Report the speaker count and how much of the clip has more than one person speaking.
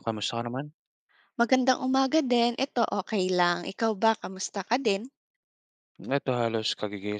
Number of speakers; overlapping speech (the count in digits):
2, no overlap